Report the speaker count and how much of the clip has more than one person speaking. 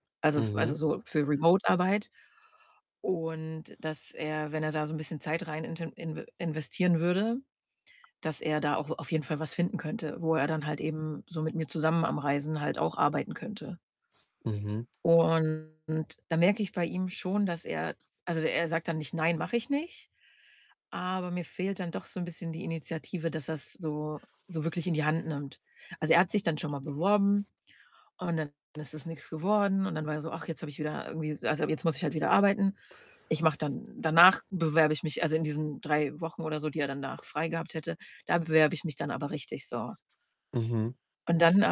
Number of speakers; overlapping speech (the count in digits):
2, about 1%